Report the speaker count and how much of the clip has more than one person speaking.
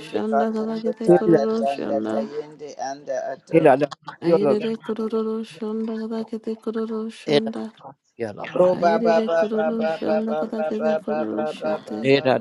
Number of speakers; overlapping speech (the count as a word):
three, about 50%